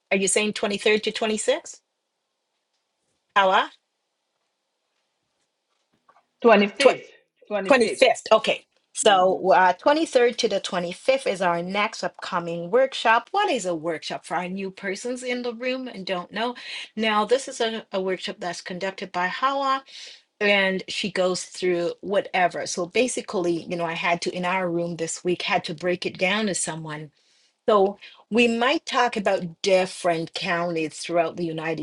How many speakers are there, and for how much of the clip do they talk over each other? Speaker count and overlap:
two, about 2%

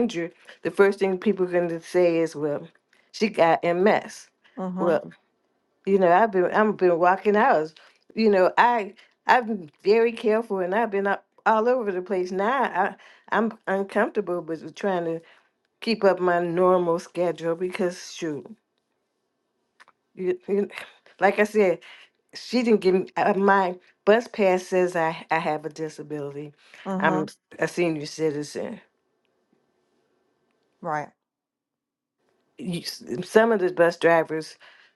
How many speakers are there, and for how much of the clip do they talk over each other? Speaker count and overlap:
two, about 1%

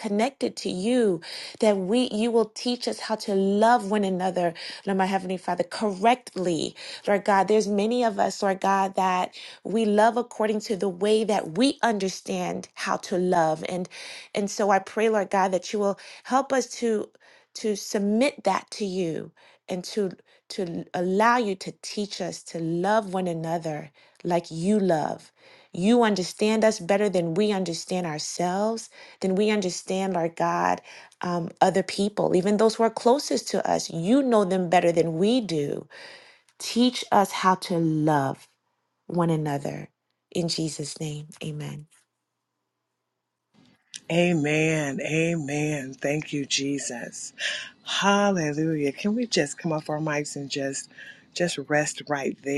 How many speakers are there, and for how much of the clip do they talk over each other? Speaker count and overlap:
two, no overlap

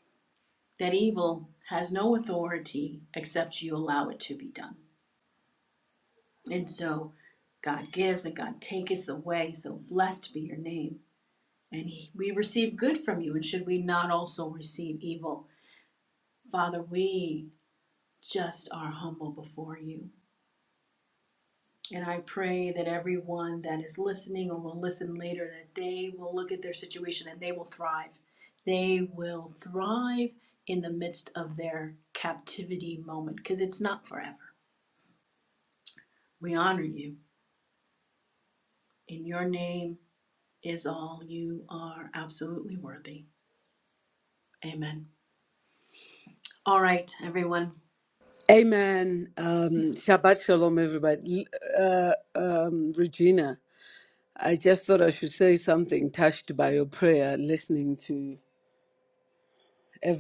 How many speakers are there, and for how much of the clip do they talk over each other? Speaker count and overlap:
two, no overlap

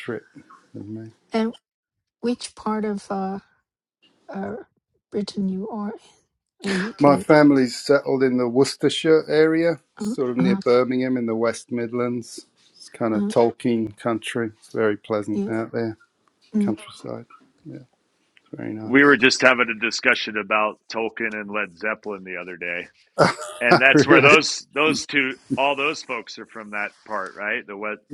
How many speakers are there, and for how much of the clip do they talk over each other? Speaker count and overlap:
three, about 6%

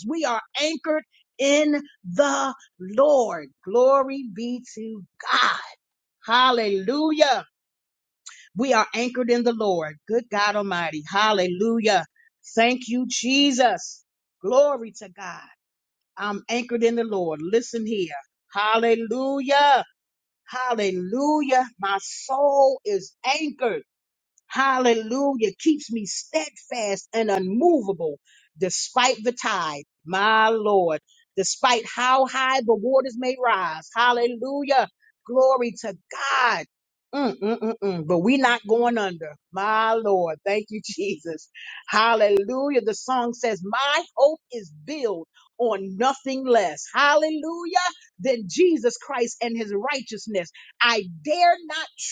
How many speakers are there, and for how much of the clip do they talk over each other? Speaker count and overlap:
one, no overlap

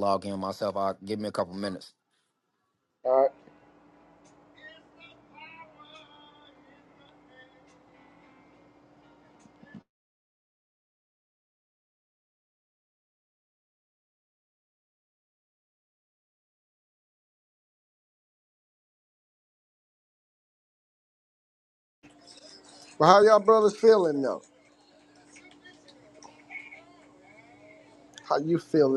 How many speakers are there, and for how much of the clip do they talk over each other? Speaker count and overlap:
two, no overlap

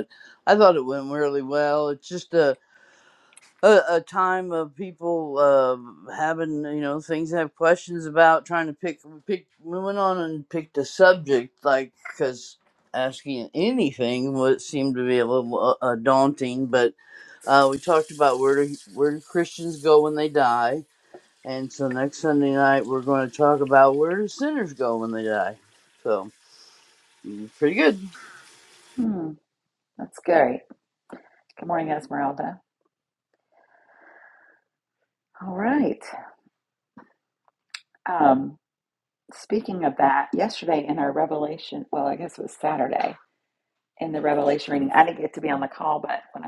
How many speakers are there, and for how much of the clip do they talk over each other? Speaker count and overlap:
two, no overlap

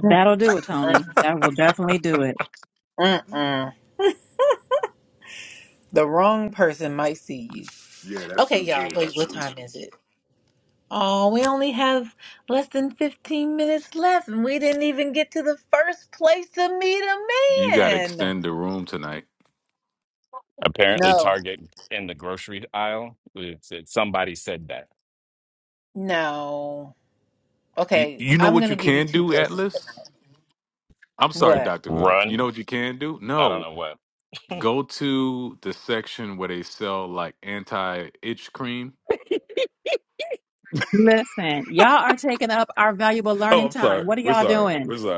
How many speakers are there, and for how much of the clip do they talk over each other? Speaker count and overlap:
four, about 13%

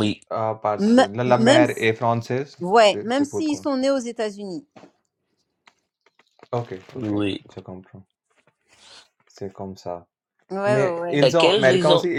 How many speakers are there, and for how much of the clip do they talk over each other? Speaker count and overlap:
three, about 27%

